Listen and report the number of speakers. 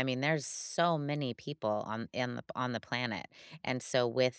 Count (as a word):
one